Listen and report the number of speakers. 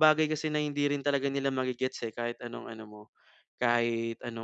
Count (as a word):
one